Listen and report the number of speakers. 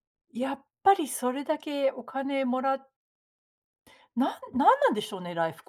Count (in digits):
1